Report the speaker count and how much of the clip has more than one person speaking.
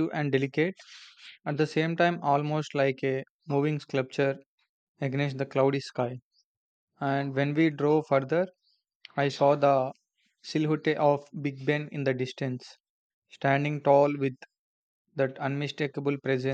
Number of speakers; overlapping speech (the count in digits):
1, no overlap